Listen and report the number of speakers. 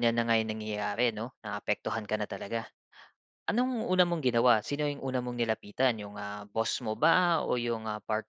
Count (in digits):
1